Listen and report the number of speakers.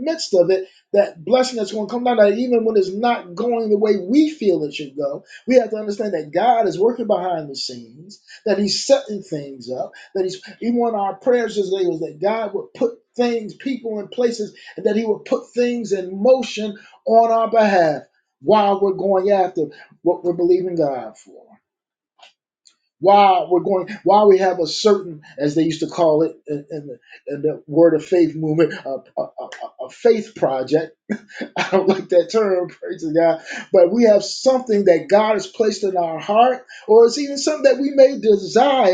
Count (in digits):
1